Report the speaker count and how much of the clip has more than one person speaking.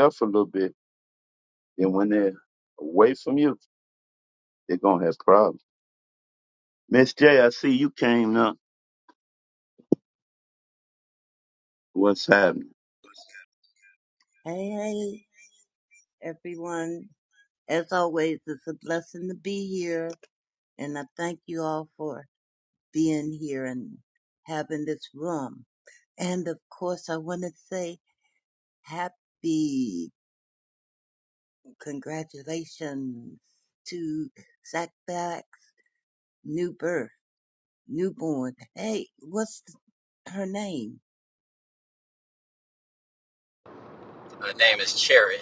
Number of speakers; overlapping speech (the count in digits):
3, no overlap